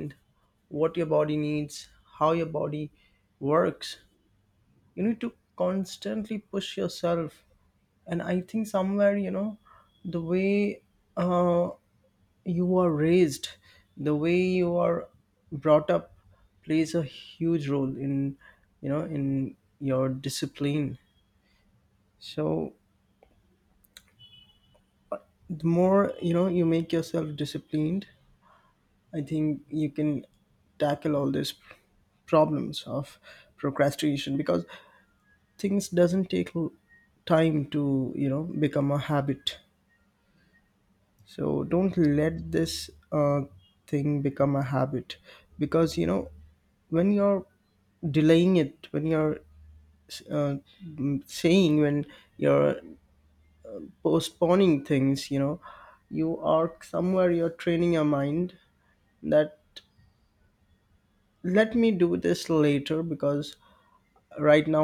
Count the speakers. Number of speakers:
1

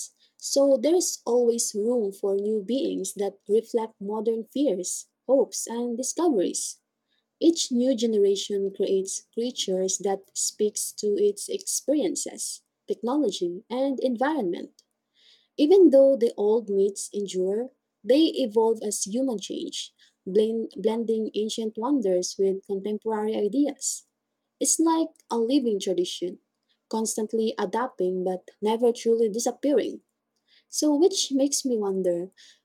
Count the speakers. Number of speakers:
1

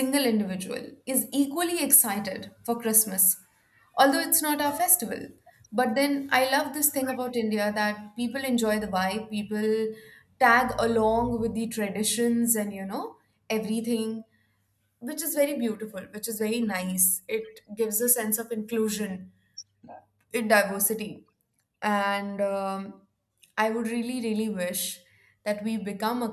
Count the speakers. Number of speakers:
1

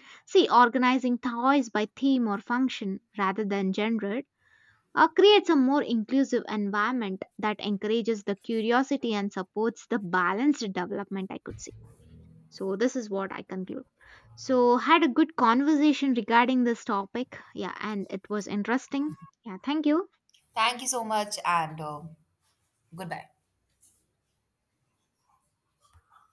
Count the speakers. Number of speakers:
2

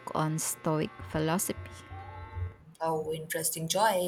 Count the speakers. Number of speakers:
2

